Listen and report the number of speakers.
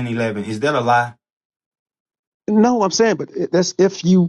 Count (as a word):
two